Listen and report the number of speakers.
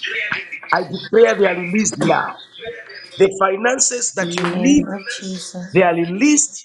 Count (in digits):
2